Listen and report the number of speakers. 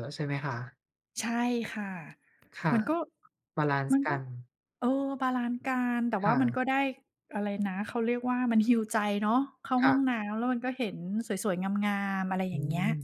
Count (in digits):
2